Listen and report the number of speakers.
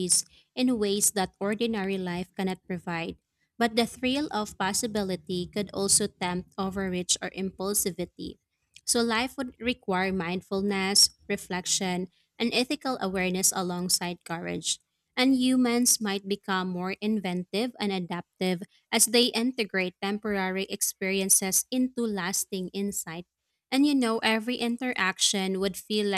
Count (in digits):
1